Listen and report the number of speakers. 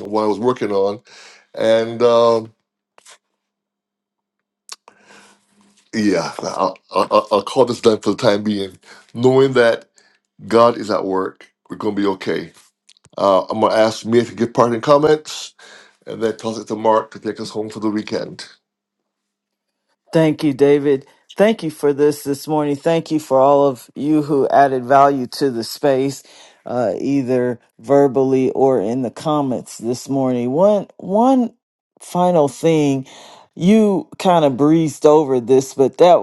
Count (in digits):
2